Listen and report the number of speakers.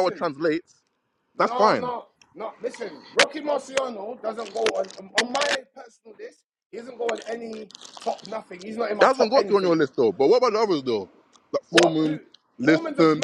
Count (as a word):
two